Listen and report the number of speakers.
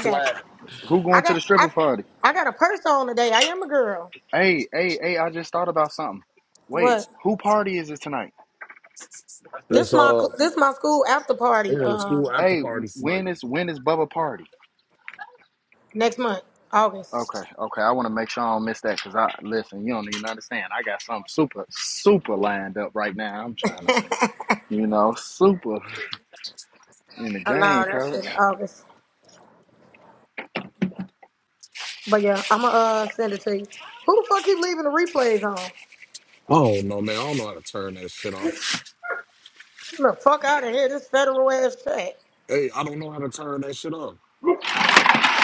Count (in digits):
3